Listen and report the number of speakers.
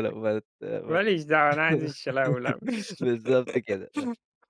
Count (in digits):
2